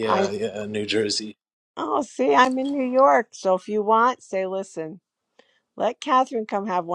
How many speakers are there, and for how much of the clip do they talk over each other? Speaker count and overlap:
2, about 4%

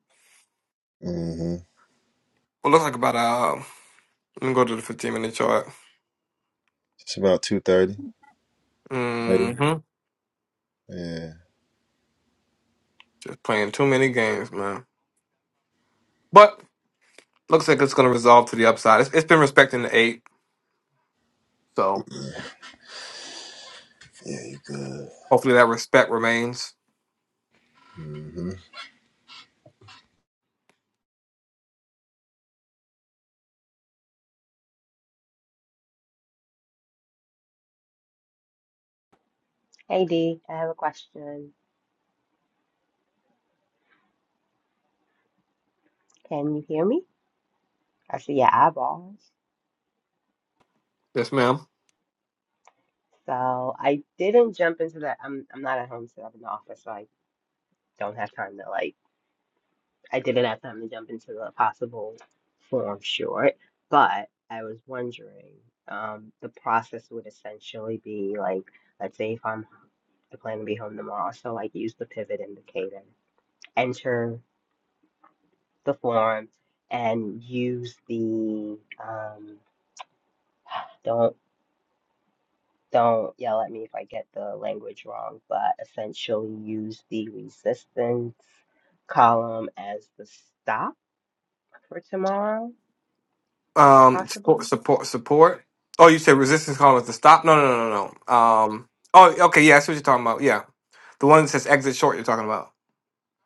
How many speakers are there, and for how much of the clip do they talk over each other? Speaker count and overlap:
3, about 1%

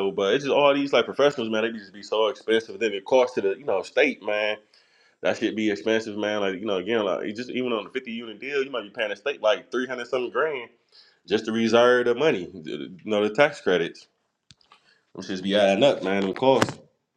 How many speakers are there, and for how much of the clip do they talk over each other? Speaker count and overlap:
1, no overlap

